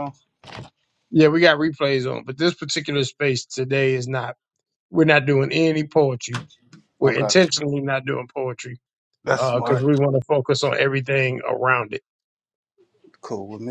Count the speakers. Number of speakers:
2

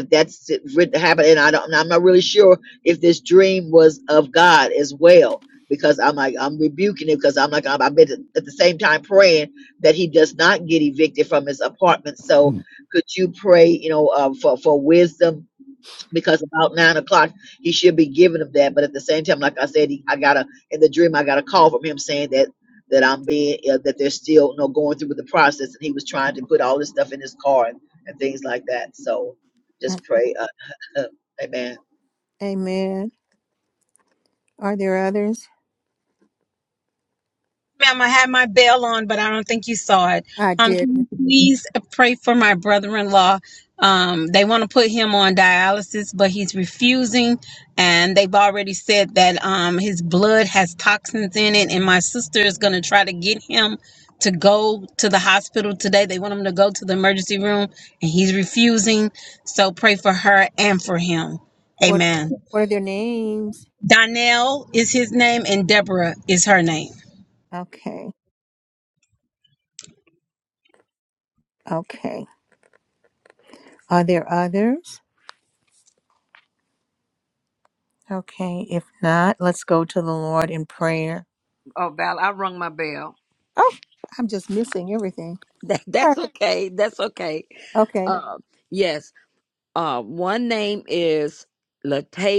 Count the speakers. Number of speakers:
4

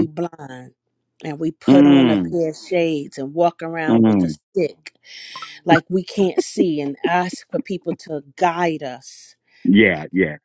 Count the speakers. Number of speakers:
2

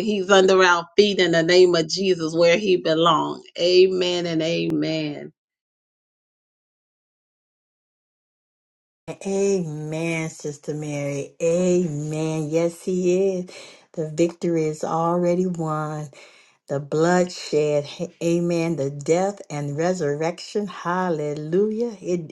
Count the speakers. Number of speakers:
2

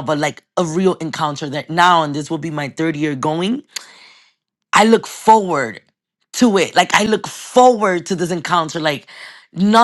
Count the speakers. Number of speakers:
1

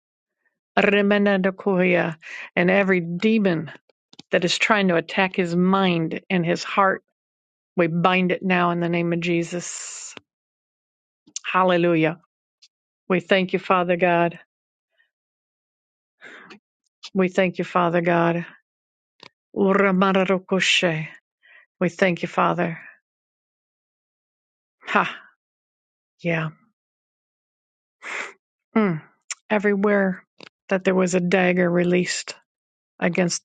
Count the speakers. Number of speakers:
1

